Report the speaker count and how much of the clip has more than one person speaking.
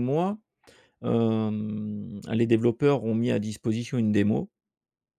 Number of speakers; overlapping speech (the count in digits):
1, no overlap